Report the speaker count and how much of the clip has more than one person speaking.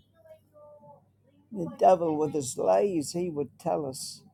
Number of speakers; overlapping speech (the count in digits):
1, no overlap